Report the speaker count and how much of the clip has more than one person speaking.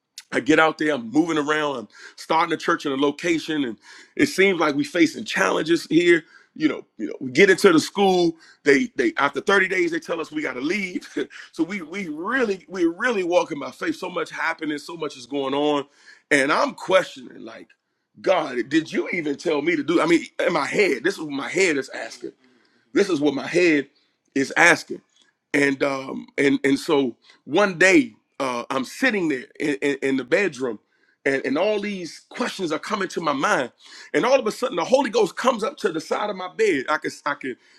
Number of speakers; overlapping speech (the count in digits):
1, no overlap